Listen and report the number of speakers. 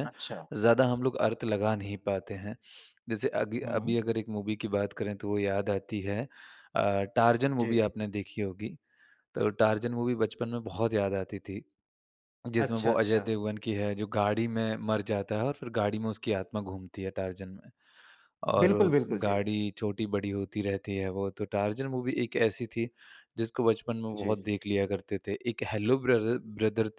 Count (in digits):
2